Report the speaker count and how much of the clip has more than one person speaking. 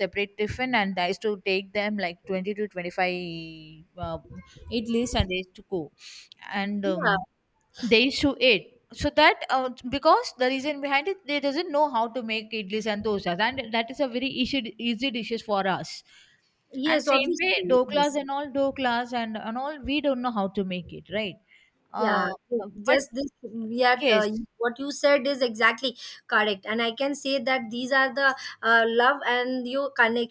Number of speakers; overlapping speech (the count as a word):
two, about 6%